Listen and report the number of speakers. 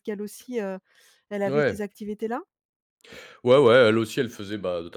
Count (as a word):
two